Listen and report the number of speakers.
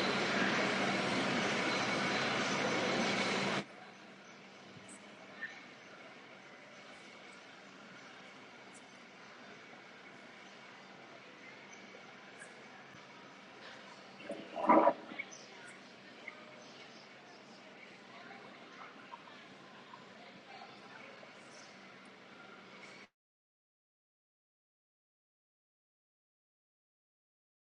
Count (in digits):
0